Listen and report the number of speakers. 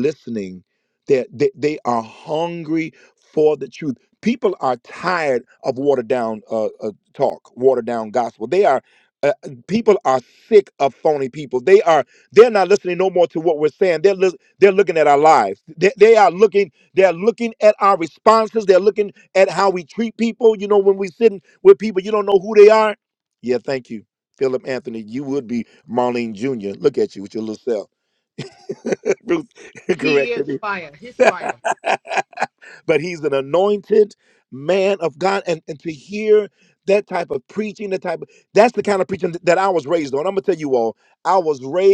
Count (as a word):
two